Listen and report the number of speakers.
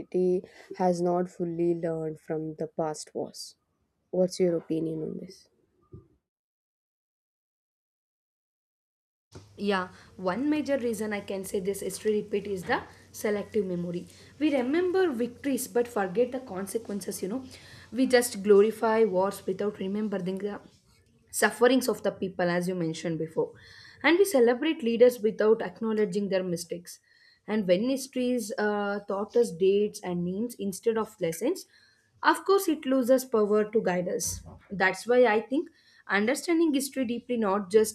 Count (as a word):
two